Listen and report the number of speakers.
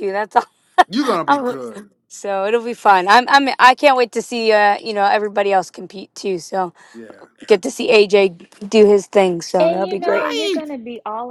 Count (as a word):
three